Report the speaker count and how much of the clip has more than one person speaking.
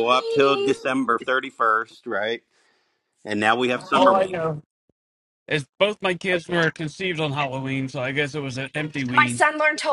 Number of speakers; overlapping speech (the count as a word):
three, about 16%